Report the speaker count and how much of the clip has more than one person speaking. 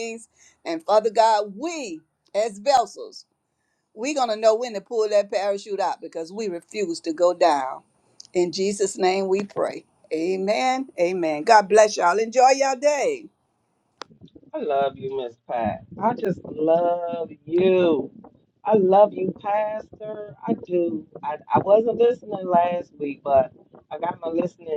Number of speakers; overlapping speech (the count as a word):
two, no overlap